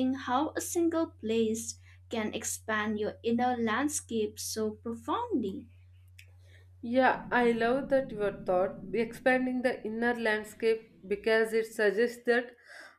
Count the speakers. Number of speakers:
2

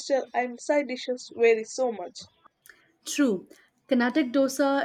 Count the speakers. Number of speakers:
2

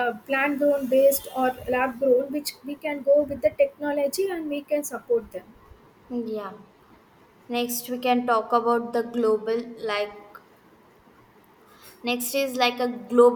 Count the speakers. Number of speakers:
2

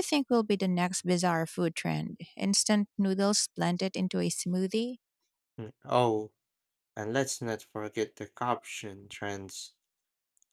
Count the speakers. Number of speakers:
2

